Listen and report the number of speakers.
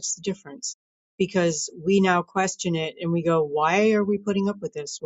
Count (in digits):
1